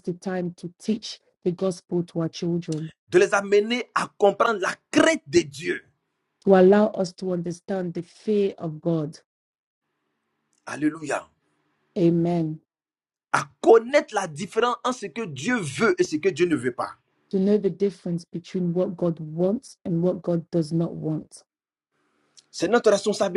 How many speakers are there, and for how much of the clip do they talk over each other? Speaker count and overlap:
two, no overlap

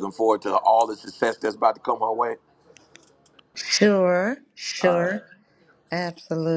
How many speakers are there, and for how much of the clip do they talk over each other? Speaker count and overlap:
two, about 5%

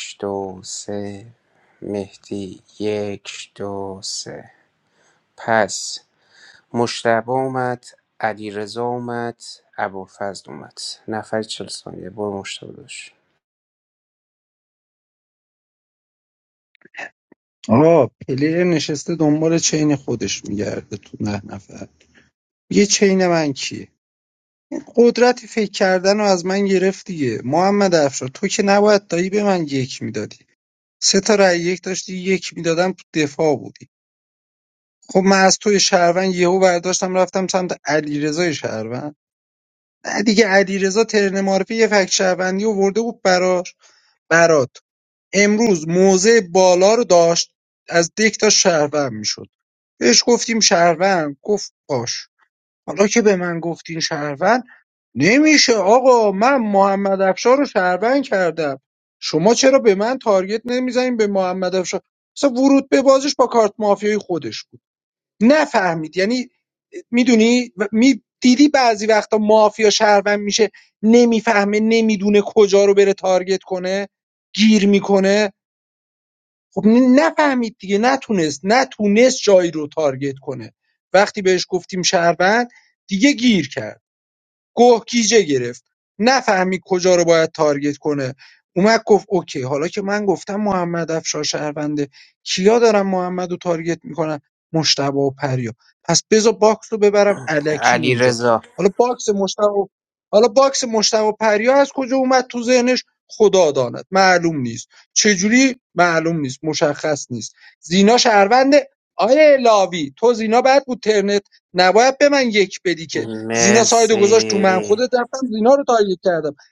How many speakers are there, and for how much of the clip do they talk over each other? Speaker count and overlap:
two, about 1%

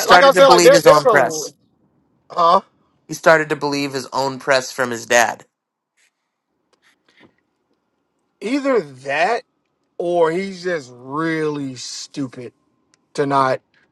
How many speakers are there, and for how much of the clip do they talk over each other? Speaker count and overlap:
two, about 9%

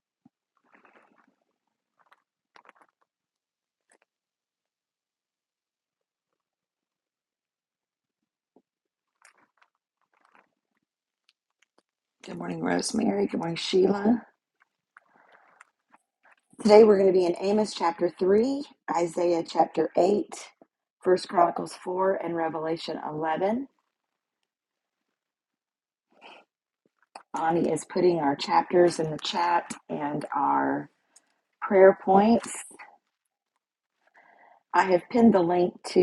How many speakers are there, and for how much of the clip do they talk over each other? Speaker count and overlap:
one, no overlap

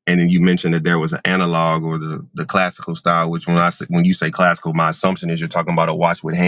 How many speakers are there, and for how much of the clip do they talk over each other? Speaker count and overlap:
one, no overlap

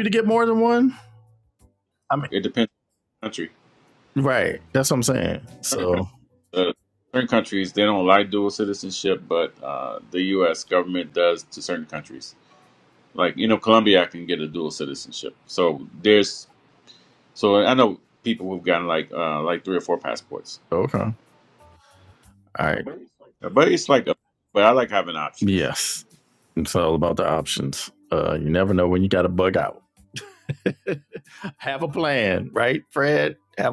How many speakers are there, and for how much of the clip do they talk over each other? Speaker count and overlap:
two, no overlap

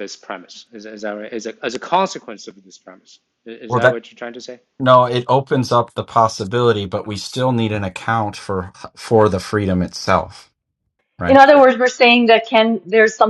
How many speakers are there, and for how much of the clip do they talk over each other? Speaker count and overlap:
three, about 3%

